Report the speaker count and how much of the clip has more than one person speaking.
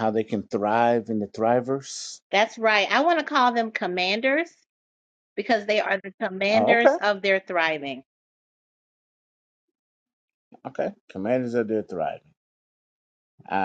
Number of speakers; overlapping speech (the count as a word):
two, about 4%